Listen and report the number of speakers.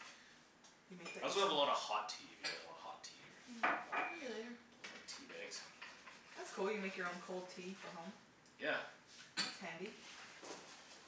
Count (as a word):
two